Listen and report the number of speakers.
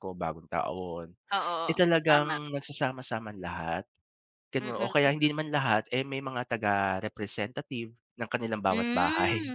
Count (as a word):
two